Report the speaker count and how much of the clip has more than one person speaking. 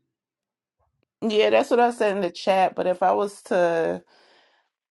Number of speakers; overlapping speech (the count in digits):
1, no overlap